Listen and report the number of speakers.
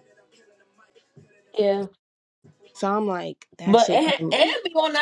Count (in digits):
2